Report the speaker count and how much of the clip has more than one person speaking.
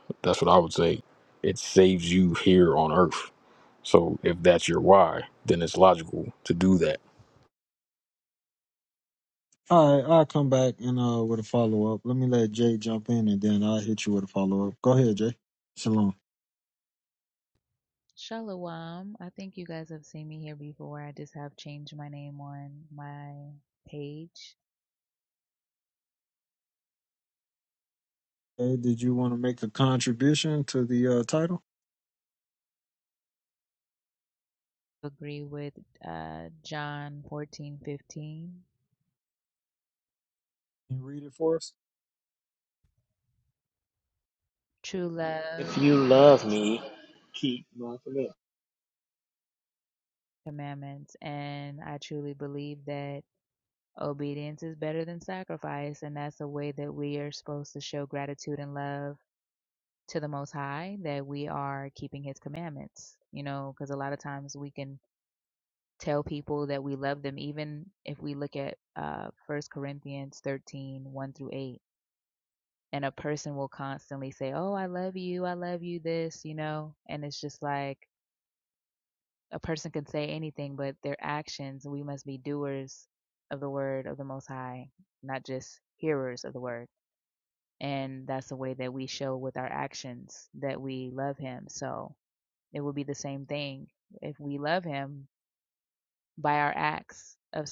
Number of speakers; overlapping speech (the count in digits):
4, under 1%